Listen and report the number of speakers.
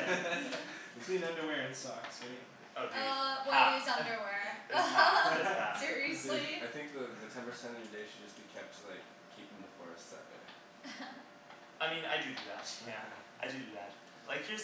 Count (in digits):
4